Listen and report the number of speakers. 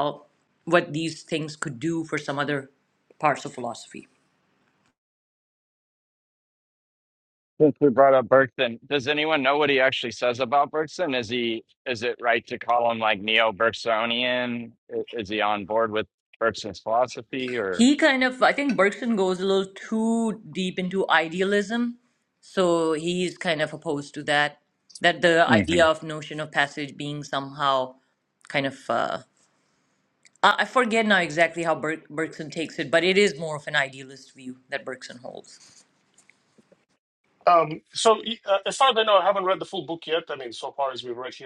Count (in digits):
3